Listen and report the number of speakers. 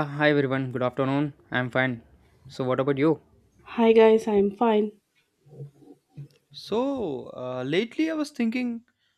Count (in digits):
3